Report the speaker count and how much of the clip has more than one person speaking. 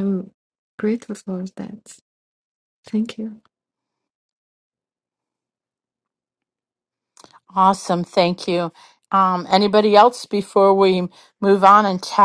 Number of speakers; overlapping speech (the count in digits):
2, no overlap